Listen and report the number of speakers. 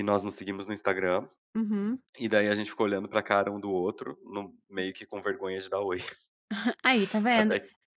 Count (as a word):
two